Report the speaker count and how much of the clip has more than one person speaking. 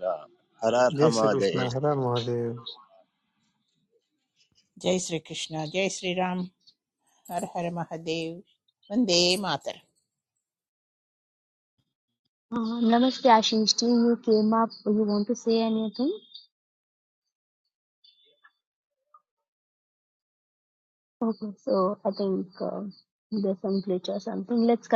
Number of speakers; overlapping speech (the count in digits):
4, about 3%